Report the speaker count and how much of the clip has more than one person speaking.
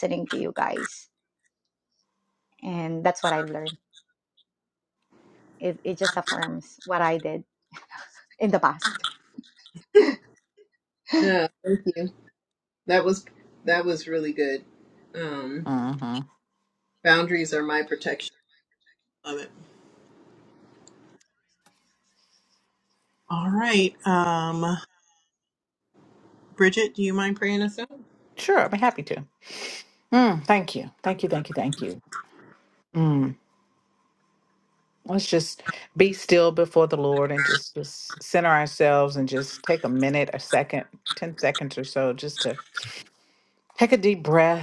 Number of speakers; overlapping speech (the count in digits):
3, no overlap